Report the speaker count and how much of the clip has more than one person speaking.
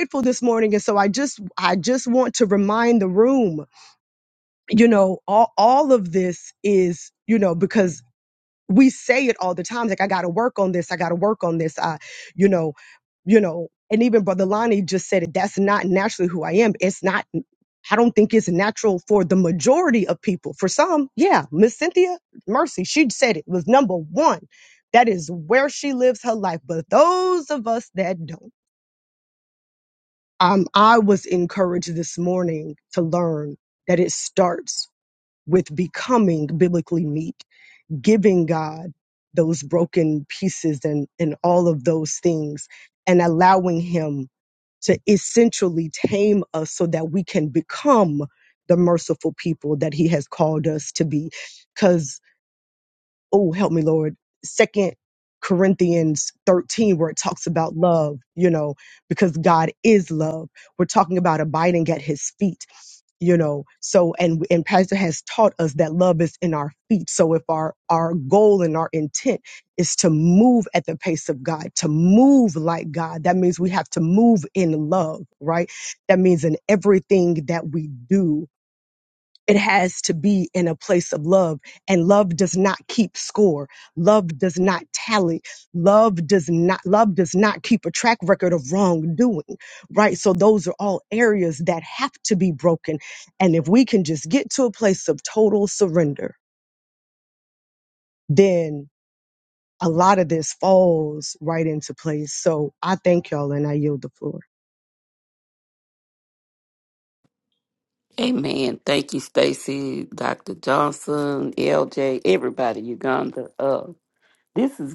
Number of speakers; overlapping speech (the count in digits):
2, no overlap